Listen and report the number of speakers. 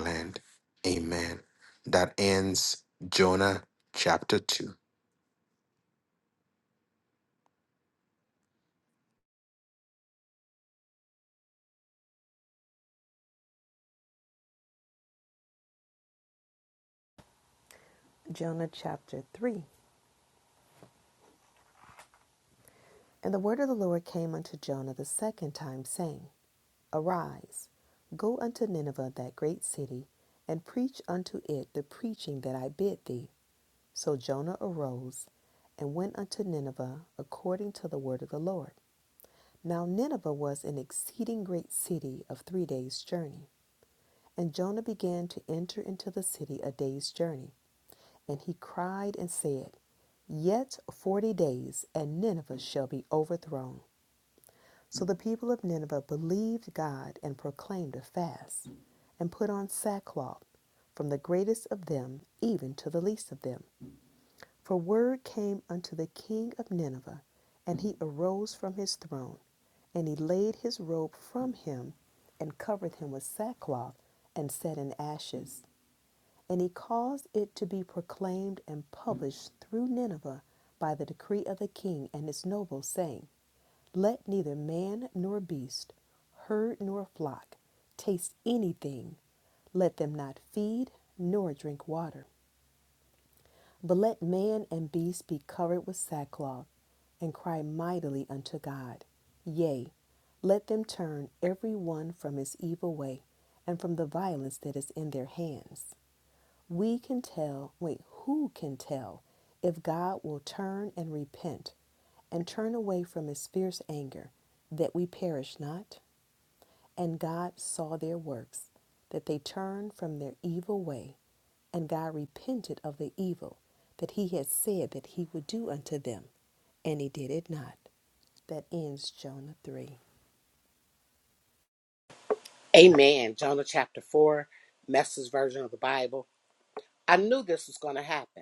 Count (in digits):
3